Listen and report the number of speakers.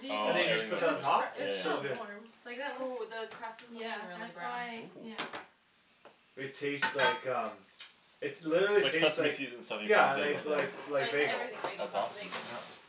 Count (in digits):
4